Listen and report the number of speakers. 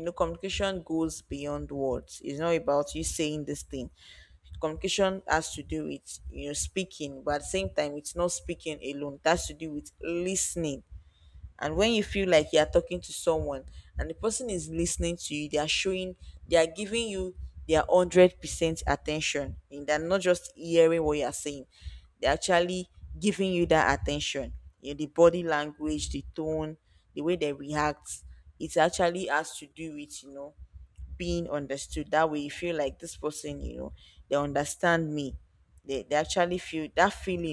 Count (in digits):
1